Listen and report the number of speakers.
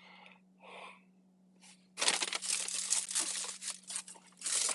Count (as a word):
zero